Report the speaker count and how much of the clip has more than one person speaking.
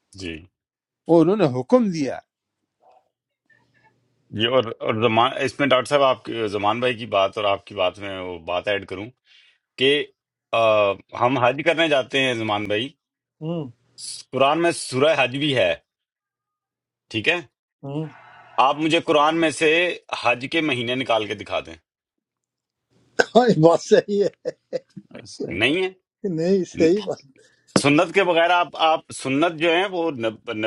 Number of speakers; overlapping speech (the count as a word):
three, about 1%